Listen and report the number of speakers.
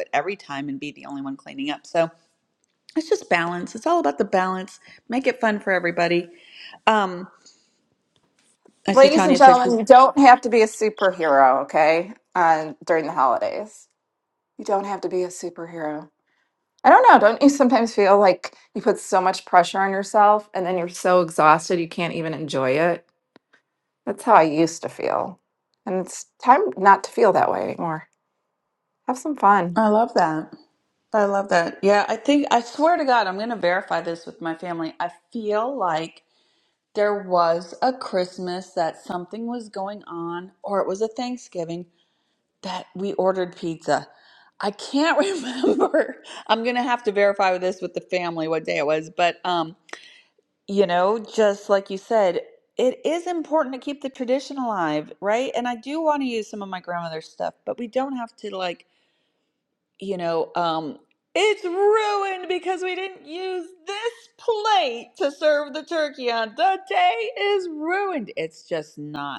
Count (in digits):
2